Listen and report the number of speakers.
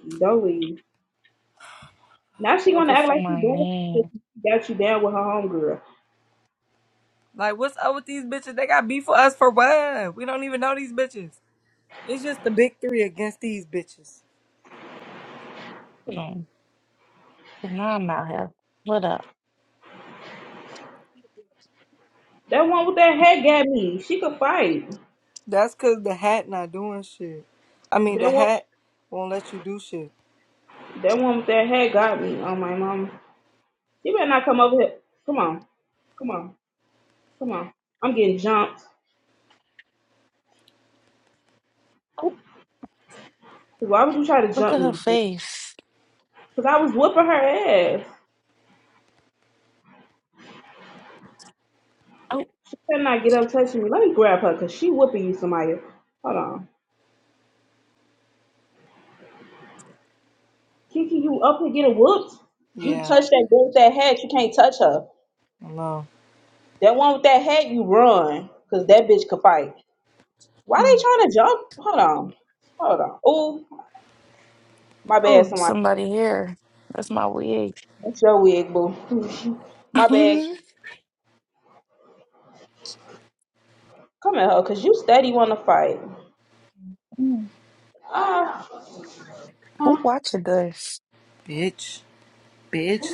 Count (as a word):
three